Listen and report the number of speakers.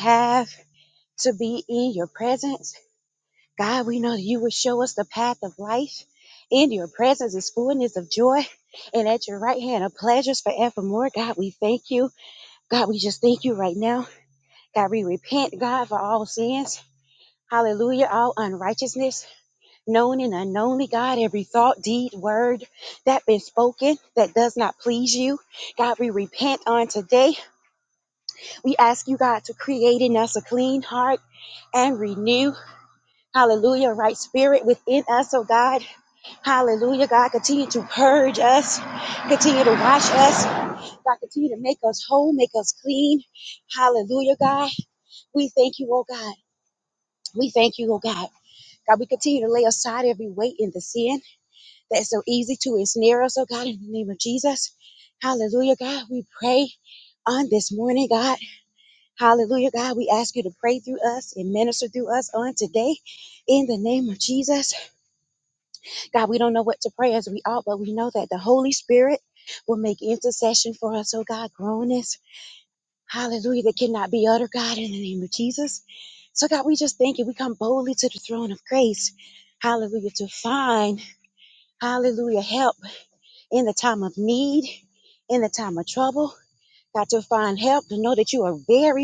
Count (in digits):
1